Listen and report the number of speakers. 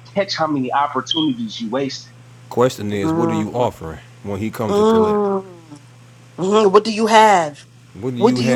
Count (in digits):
3